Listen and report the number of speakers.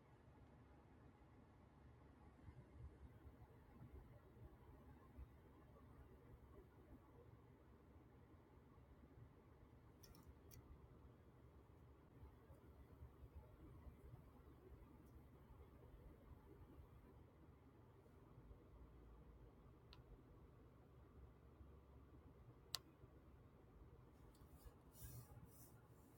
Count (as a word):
zero